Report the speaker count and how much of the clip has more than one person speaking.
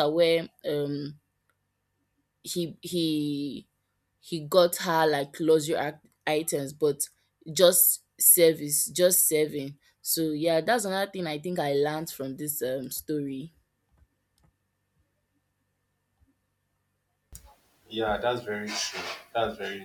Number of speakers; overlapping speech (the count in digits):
2, no overlap